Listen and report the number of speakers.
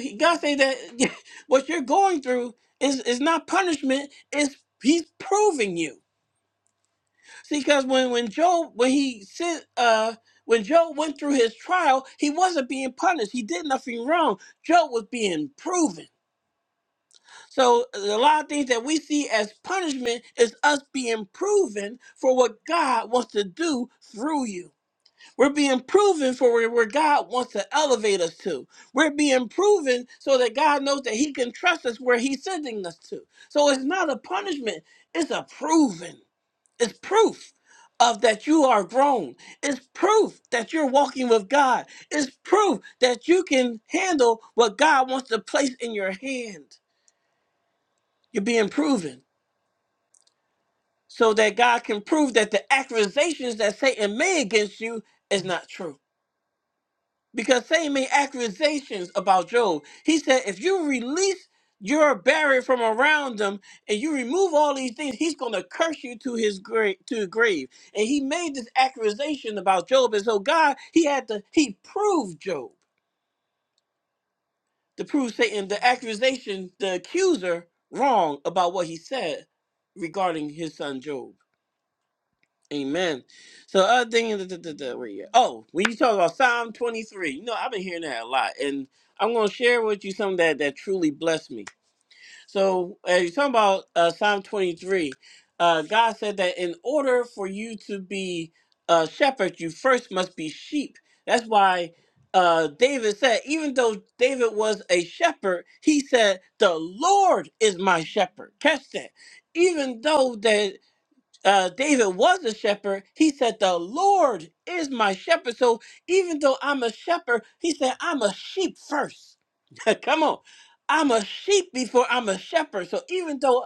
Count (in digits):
1